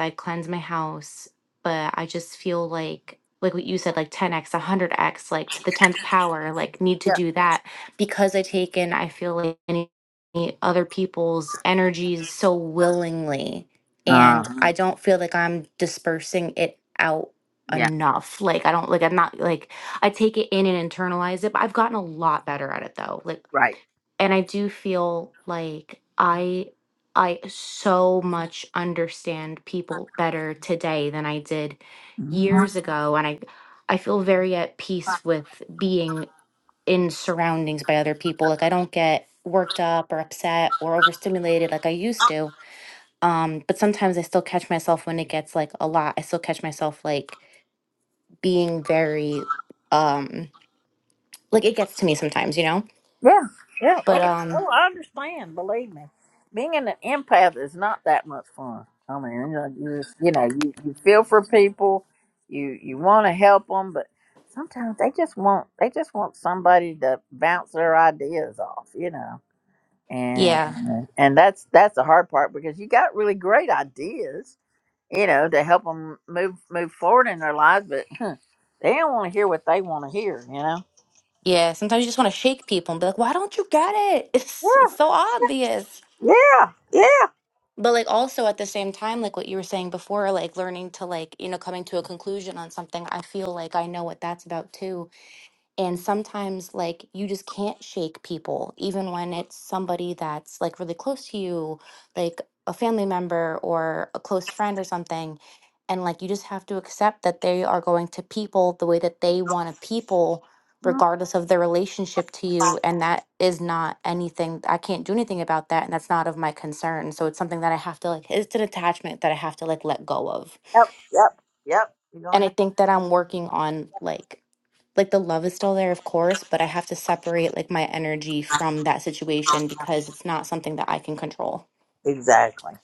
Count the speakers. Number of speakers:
2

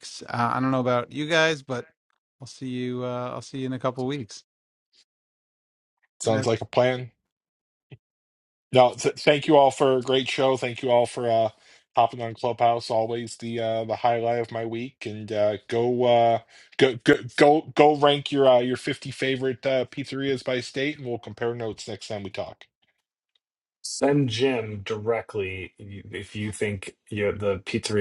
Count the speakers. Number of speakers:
3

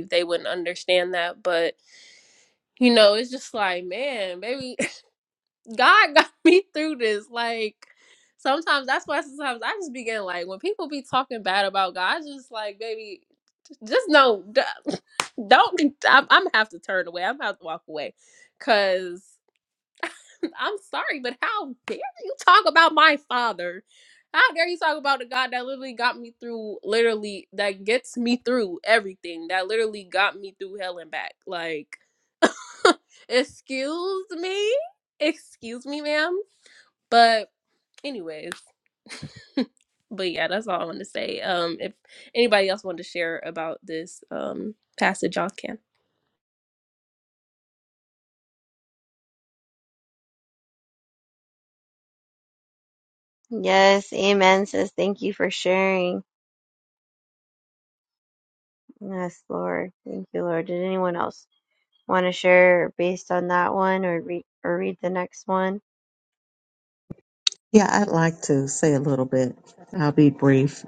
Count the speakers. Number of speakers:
3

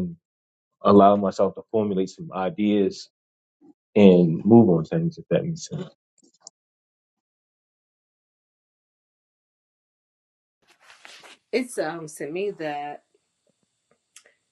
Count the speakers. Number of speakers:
2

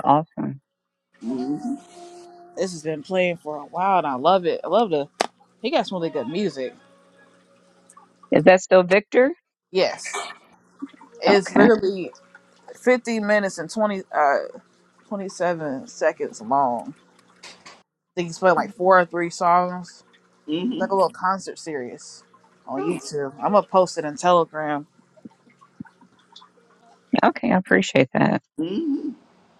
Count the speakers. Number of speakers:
3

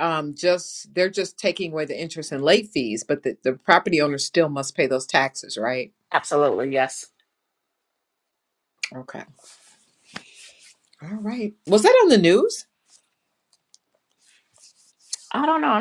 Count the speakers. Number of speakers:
2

